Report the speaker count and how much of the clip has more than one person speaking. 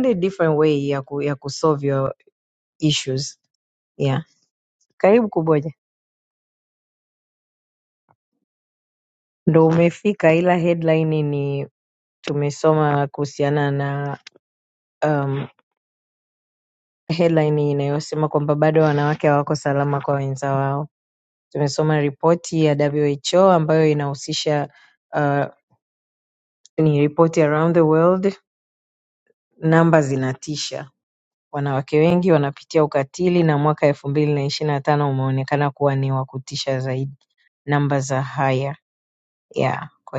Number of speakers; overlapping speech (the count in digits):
1, no overlap